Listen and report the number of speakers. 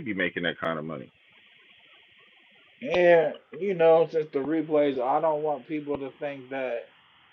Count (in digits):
2